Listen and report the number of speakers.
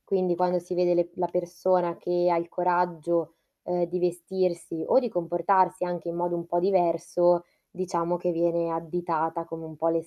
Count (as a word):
one